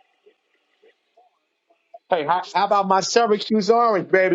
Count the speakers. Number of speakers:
1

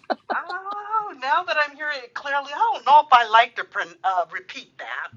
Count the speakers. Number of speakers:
1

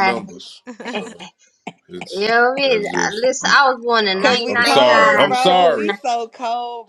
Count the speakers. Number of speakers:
3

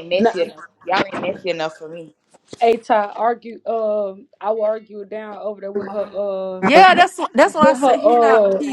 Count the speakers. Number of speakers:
3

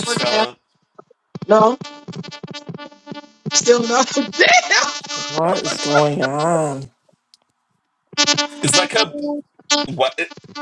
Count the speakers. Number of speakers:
3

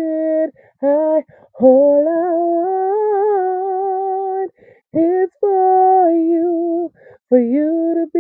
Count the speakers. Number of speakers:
1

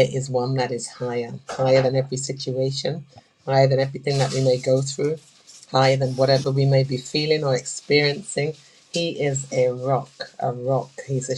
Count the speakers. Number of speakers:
1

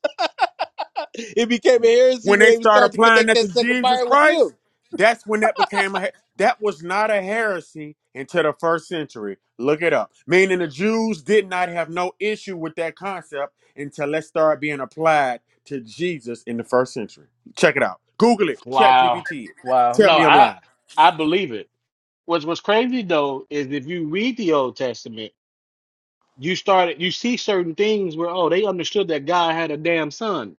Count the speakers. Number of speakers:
3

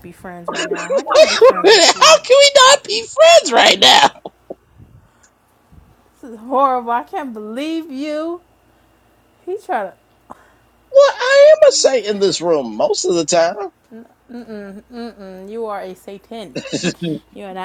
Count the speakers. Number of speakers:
2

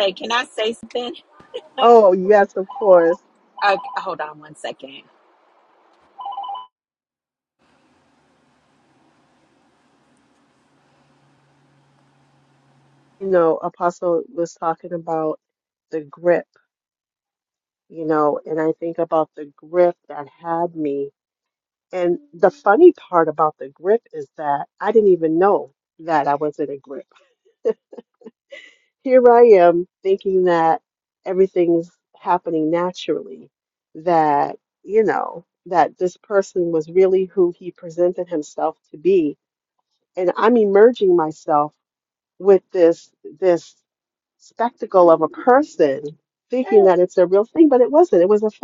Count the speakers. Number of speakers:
2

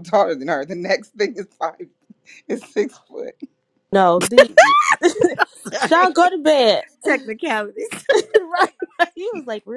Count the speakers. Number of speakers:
3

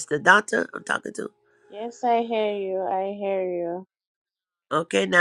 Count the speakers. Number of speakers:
2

